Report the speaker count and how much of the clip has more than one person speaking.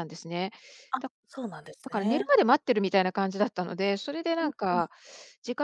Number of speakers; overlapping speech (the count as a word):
two, about 15%